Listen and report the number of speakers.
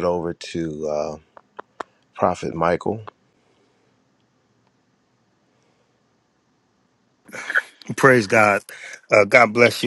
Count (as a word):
two